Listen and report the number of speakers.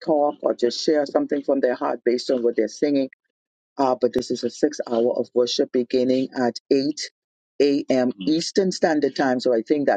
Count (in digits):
1